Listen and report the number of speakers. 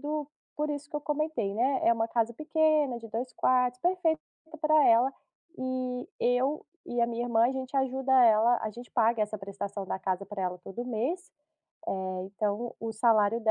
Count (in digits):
1